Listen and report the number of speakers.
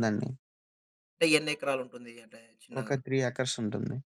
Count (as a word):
two